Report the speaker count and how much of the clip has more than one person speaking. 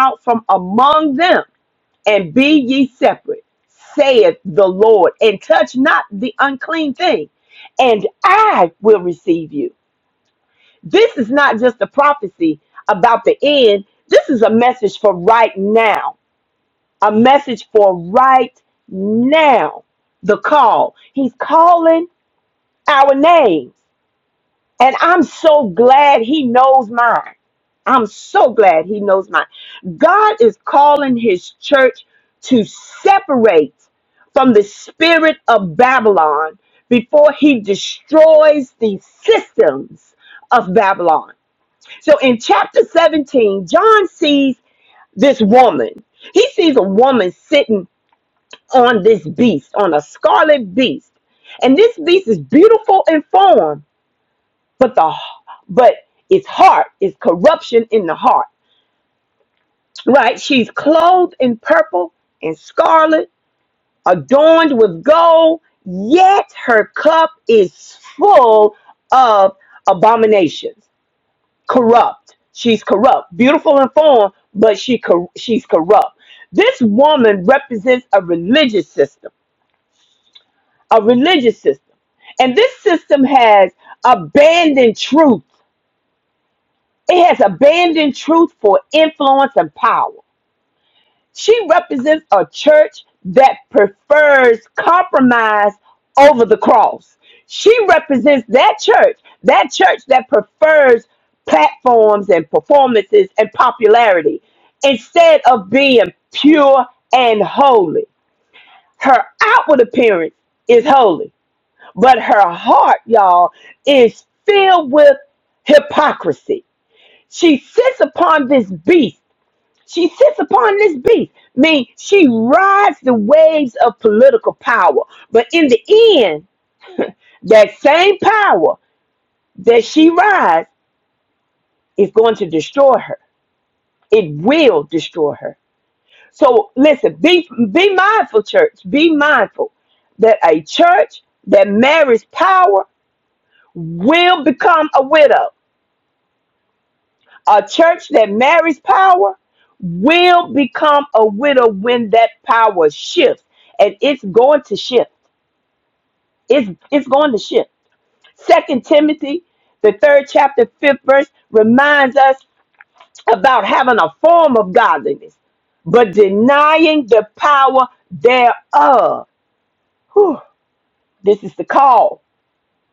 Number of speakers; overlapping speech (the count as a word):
one, no overlap